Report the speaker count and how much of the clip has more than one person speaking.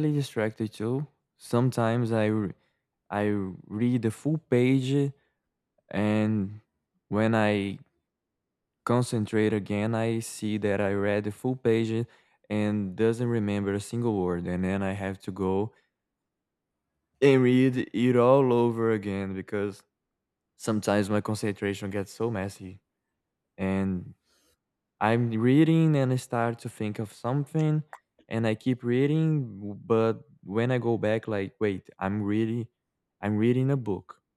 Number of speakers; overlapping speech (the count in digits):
1, no overlap